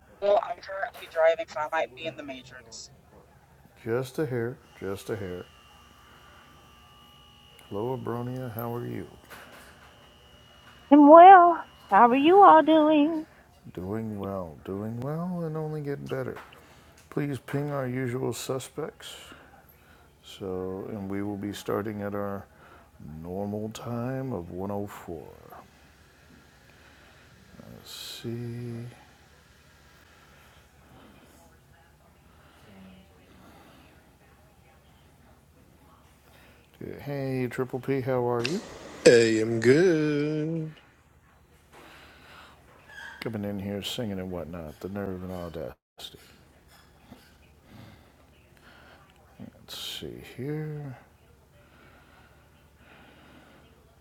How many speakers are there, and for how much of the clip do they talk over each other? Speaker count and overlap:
four, no overlap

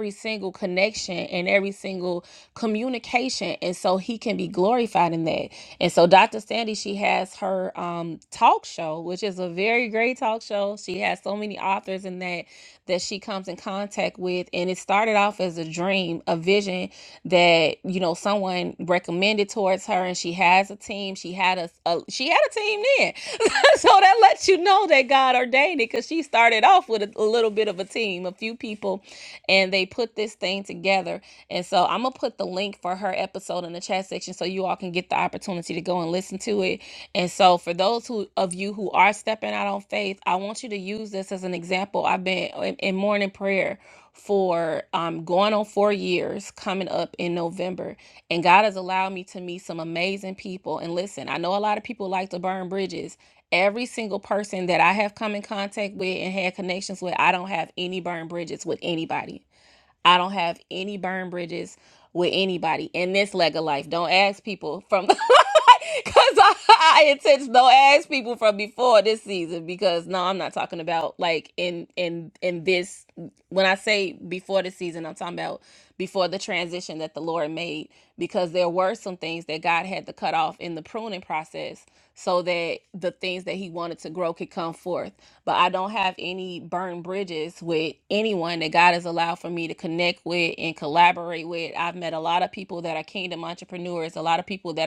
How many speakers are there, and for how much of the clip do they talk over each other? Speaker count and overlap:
one, no overlap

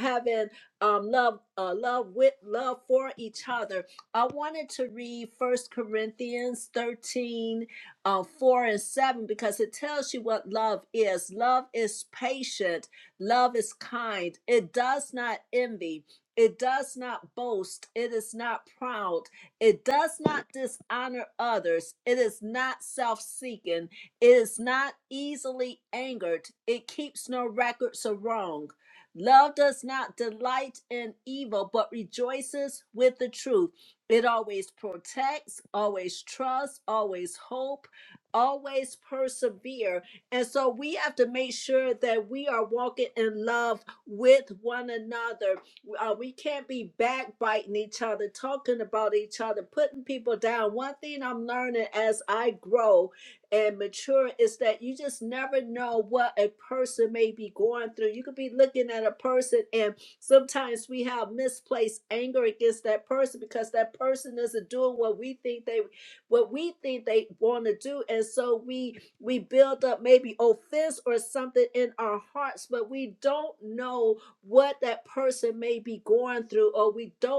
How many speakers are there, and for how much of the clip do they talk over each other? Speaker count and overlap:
one, no overlap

